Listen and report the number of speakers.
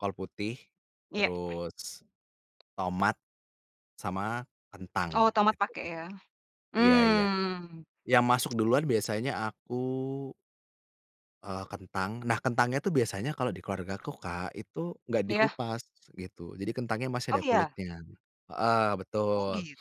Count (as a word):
two